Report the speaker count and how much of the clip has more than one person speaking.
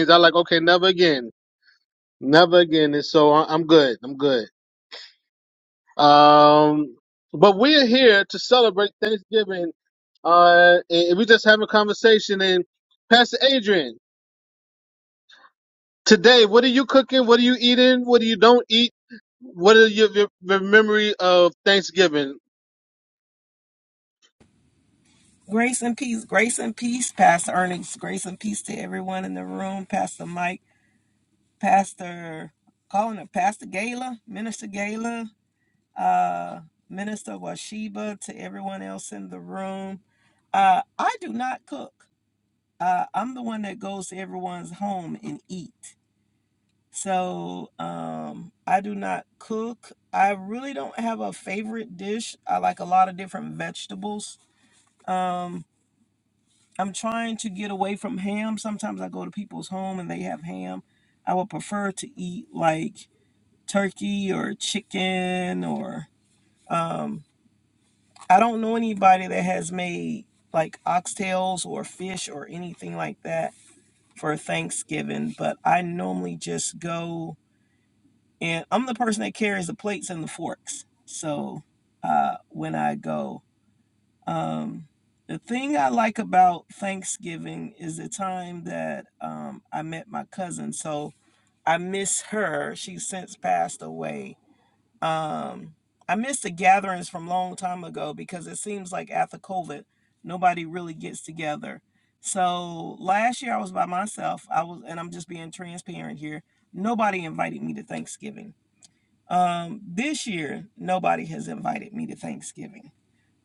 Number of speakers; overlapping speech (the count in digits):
2, no overlap